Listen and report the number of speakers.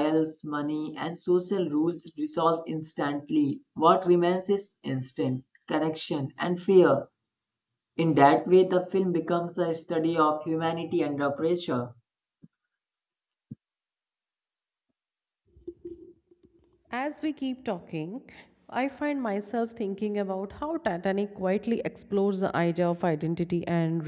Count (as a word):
two